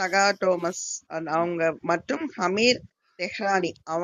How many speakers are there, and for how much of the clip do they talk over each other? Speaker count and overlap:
1, no overlap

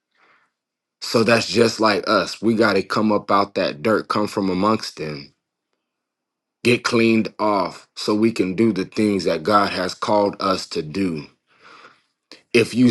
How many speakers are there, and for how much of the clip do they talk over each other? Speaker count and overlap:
1, no overlap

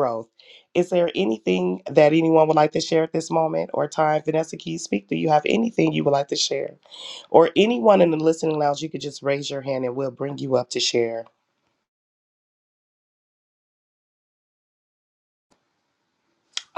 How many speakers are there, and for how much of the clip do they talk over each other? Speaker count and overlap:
1, no overlap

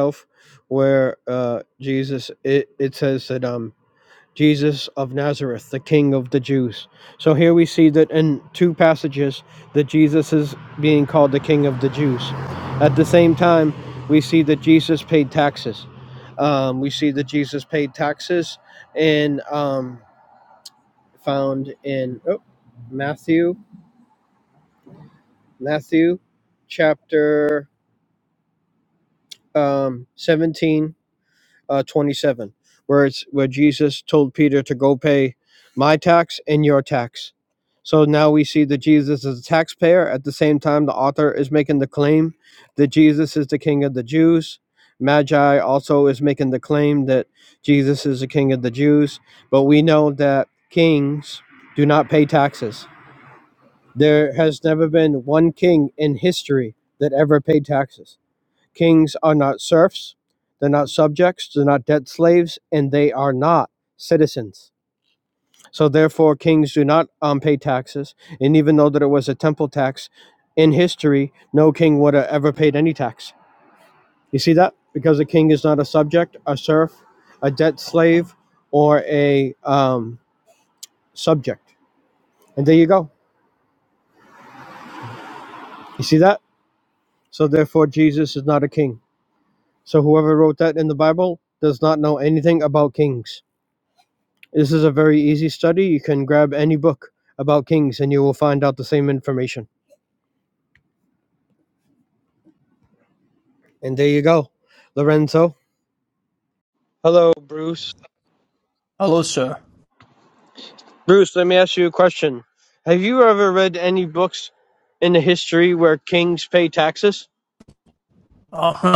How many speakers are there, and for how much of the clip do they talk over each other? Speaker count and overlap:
2, no overlap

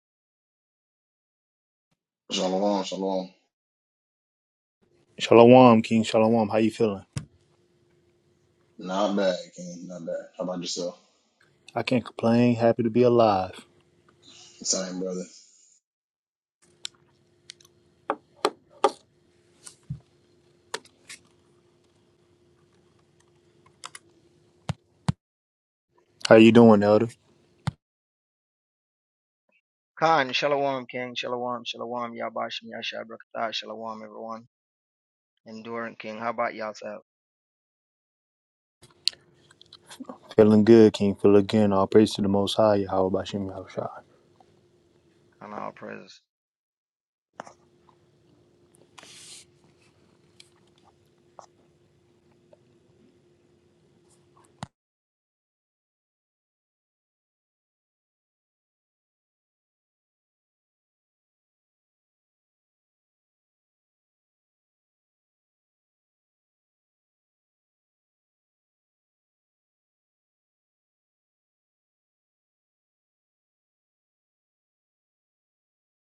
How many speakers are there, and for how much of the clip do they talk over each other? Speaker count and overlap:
3, no overlap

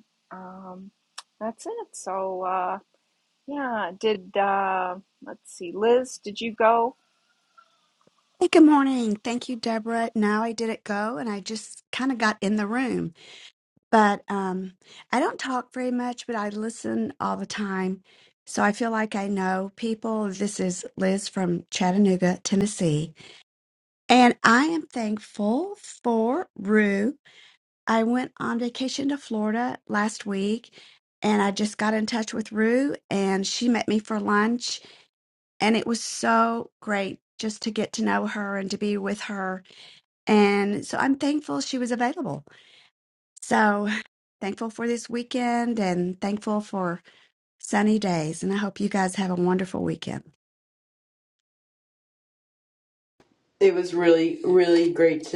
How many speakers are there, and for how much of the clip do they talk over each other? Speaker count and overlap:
3, no overlap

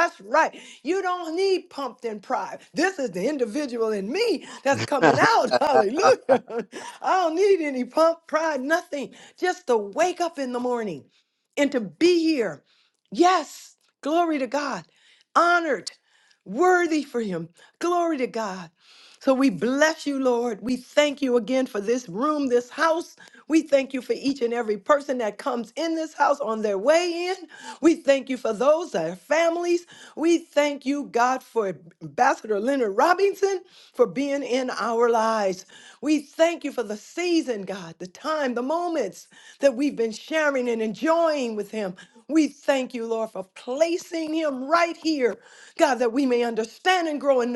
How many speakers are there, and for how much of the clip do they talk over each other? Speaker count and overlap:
1, no overlap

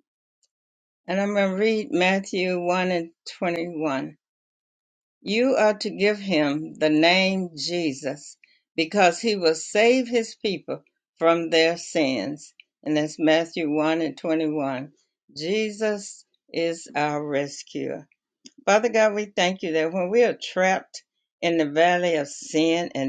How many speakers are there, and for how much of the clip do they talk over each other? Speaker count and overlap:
1, no overlap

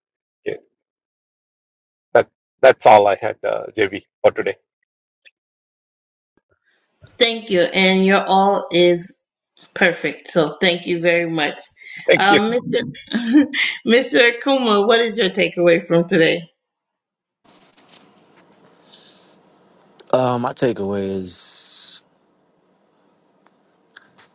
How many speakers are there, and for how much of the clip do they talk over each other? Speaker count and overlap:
3, about 1%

